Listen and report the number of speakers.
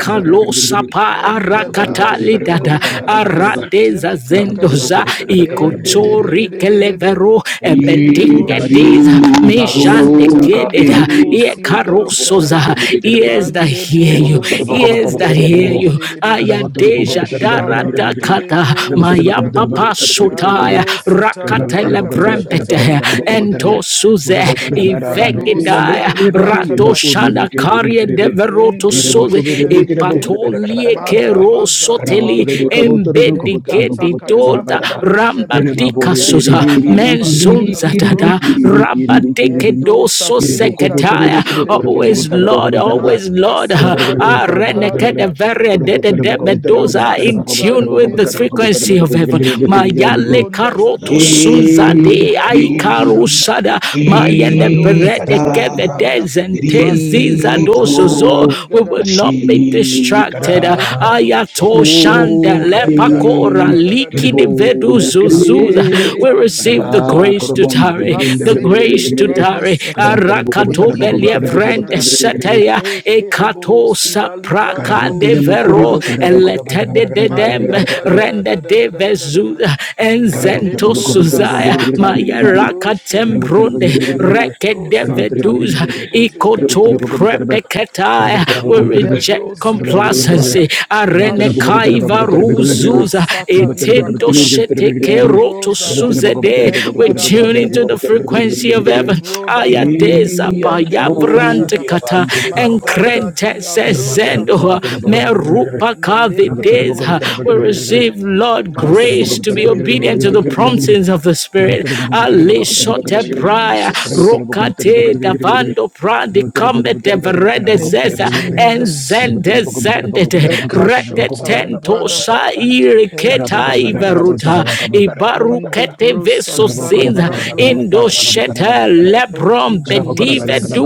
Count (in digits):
3